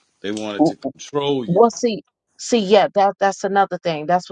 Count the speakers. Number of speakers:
2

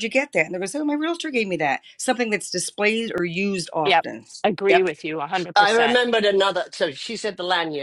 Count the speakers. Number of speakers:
3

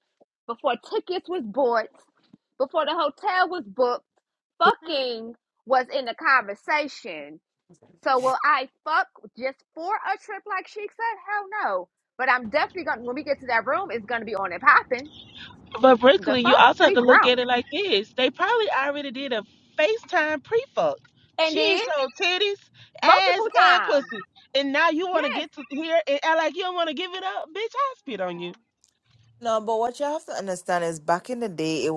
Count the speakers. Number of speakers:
3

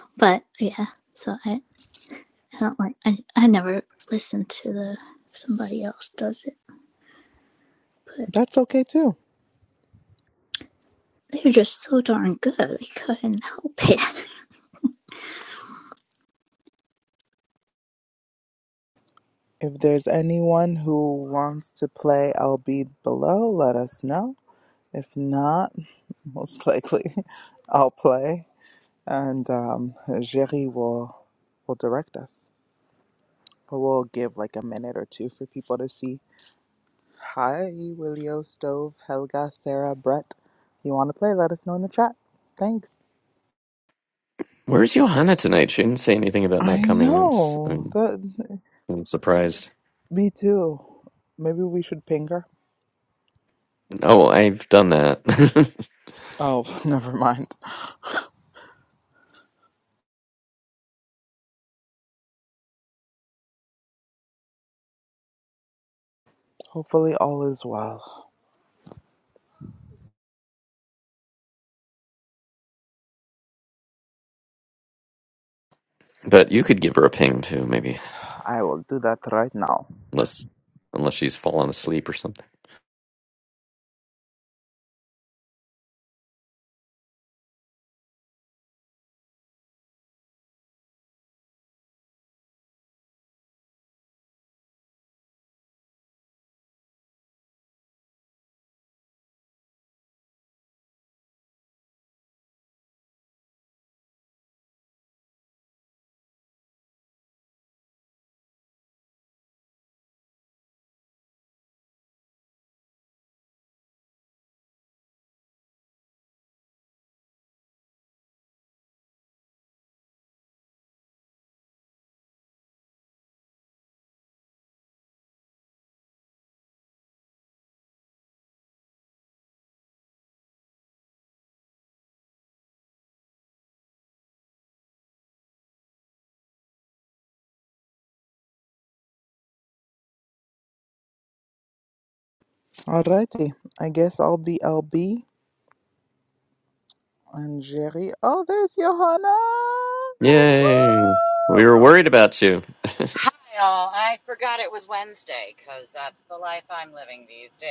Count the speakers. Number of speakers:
4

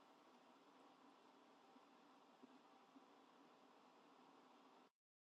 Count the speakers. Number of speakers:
0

